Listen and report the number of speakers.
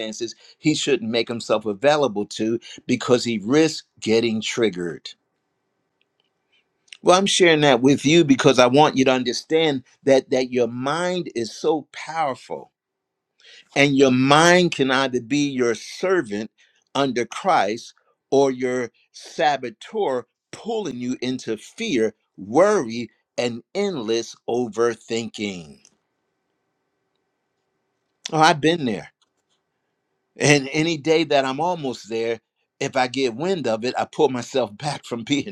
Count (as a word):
one